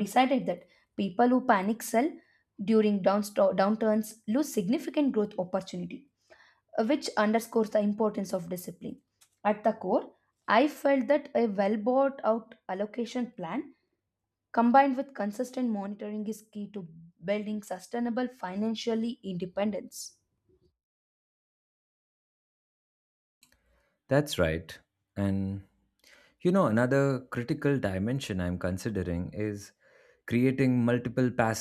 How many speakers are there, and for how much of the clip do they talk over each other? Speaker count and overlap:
2, no overlap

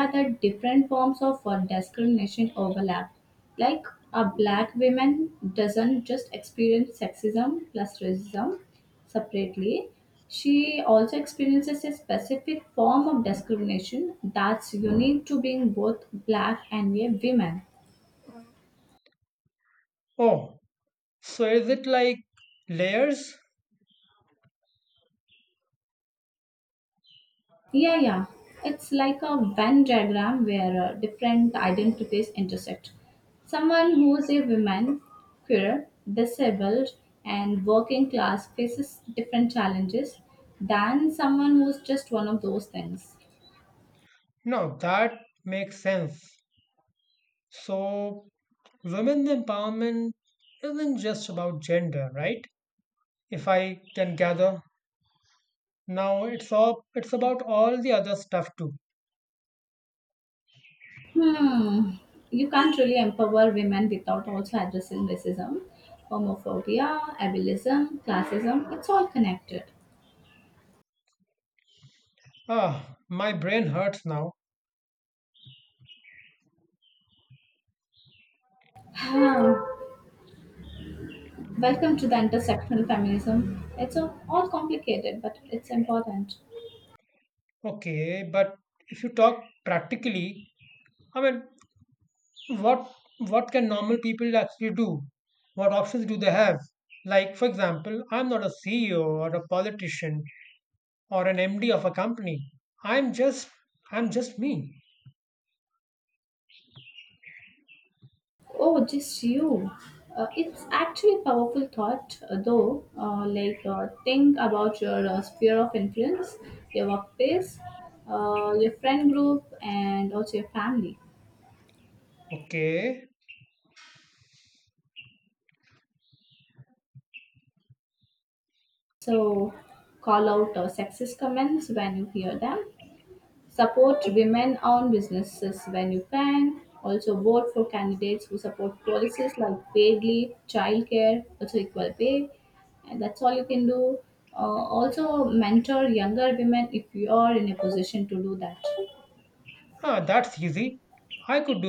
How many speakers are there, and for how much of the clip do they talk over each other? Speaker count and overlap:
2, no overlap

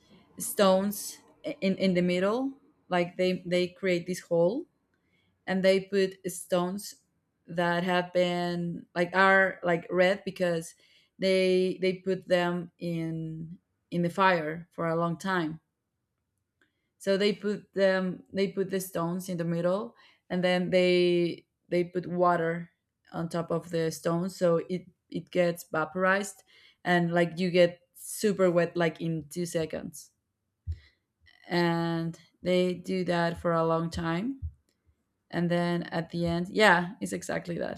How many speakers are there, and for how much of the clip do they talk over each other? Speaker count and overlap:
1, no overlap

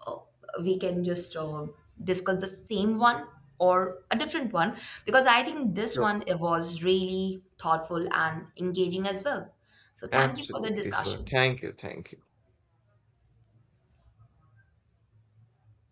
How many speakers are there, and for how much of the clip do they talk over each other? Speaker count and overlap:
2, about 9%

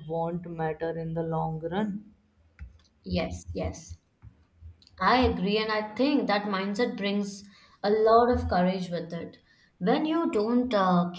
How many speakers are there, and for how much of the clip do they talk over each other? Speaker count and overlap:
2, no overlap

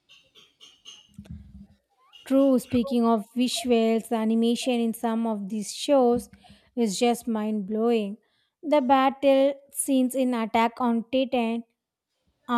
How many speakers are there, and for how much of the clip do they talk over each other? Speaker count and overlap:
1, no overlap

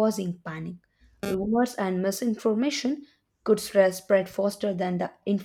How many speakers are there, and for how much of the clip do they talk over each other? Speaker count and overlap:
1, no overlap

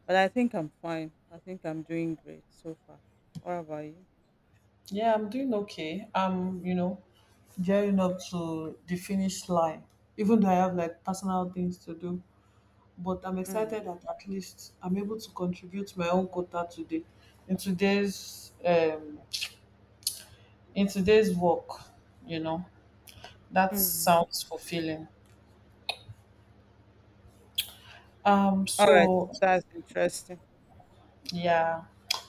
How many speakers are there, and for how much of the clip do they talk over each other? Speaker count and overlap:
2, about 2%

